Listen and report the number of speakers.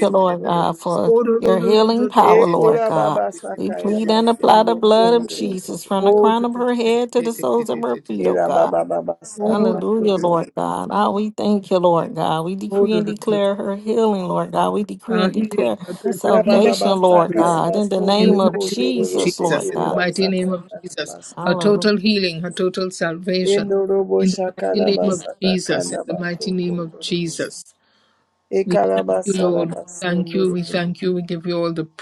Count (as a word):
three